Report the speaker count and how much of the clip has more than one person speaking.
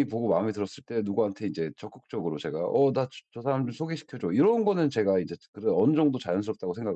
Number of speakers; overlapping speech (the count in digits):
1, no overlap